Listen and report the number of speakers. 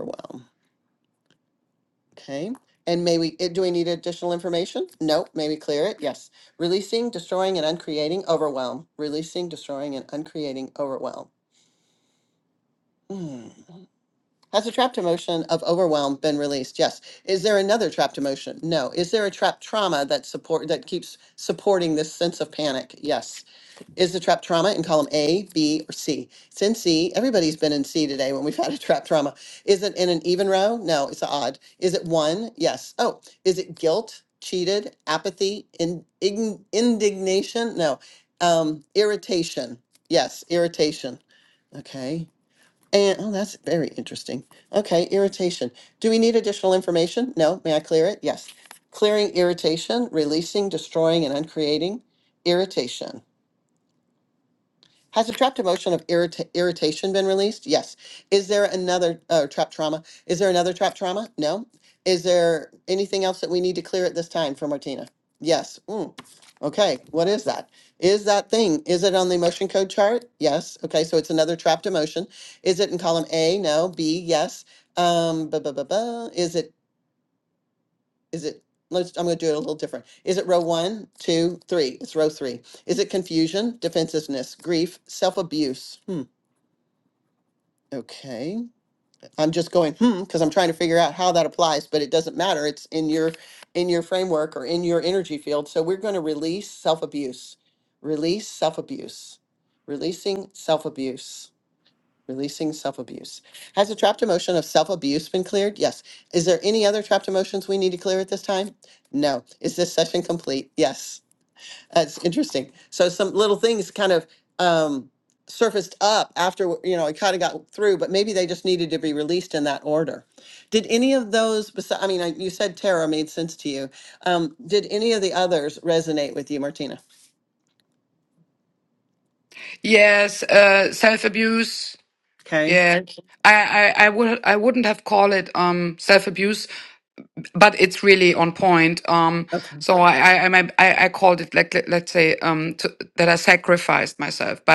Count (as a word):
two